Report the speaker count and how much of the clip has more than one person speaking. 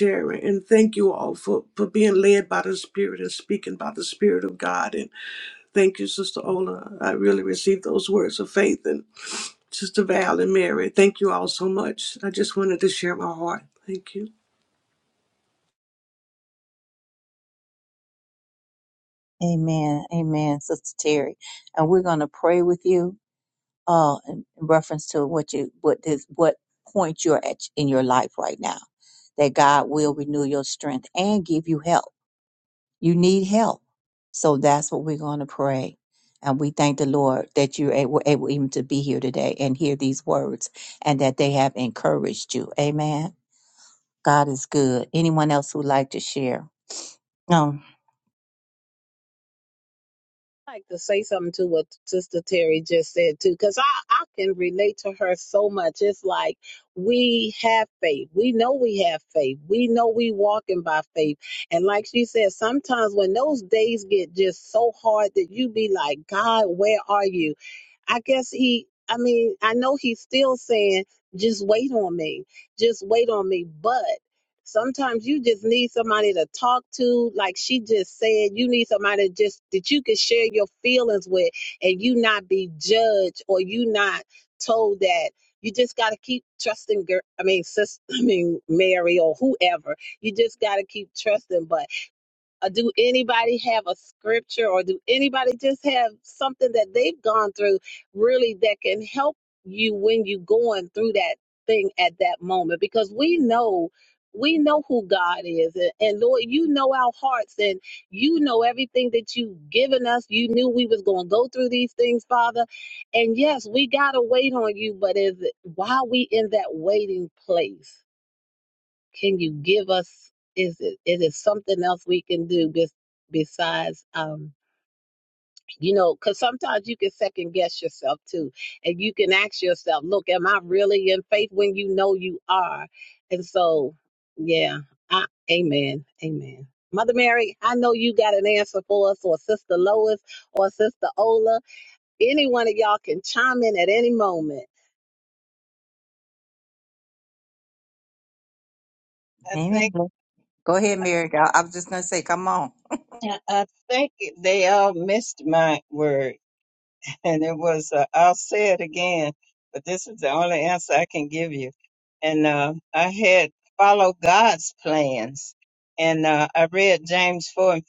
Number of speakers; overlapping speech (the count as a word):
four, under 1%